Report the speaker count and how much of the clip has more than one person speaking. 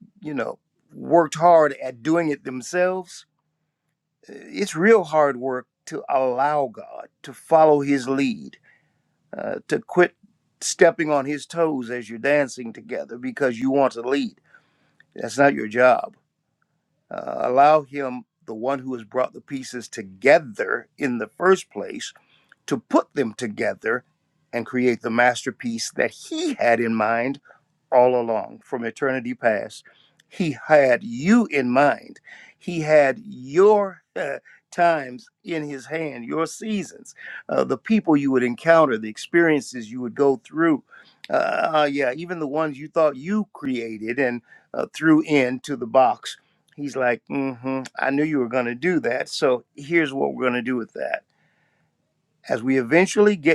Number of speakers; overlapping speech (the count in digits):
1, no overlap